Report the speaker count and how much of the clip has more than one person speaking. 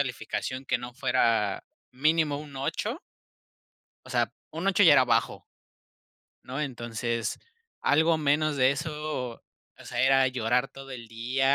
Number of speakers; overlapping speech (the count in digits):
1, no overlap